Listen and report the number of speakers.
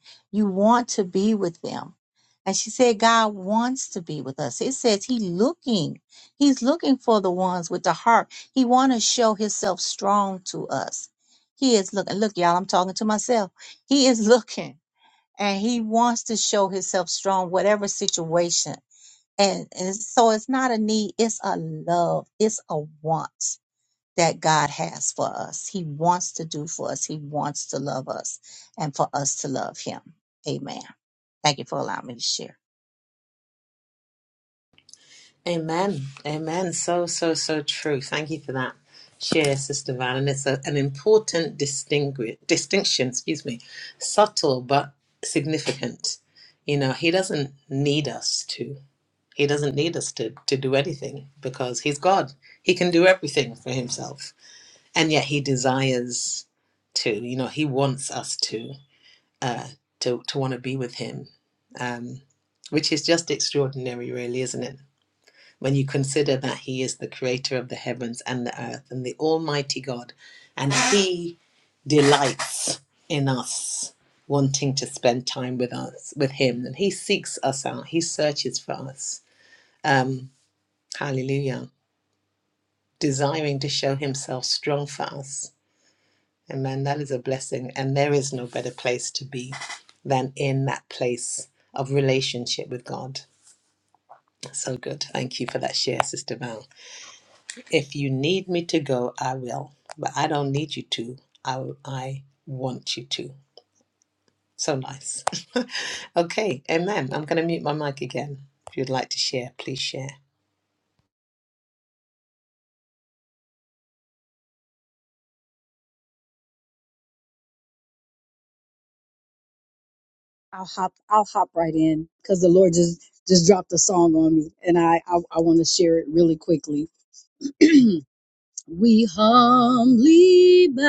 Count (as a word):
three